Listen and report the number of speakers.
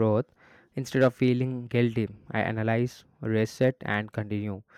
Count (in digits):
1